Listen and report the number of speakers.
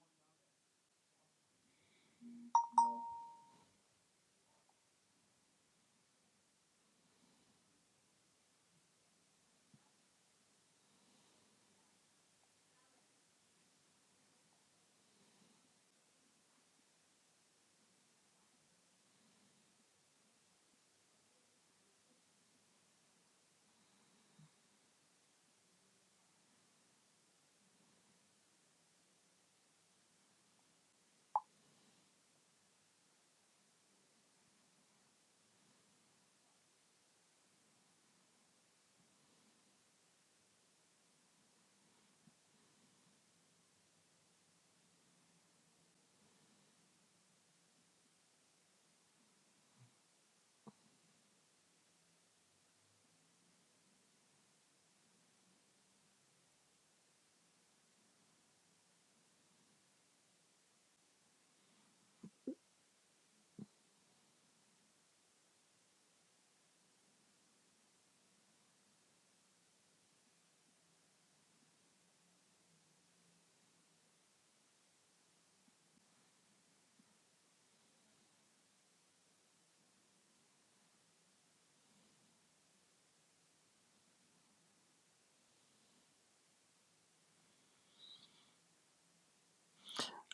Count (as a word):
zero